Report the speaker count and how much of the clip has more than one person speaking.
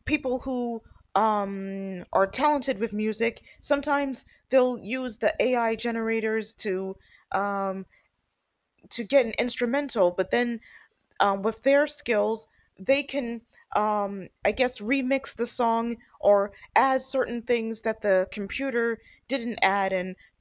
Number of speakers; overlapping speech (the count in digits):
1, no overlap